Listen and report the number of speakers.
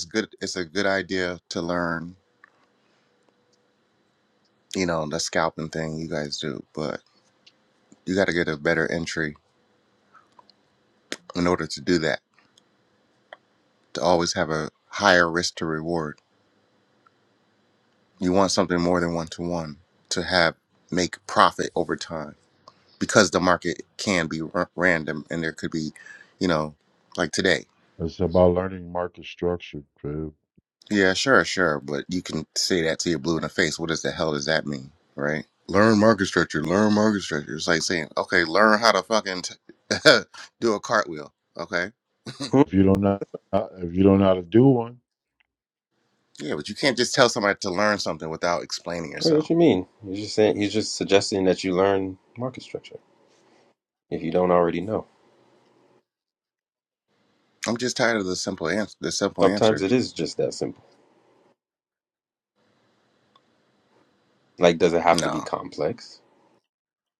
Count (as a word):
three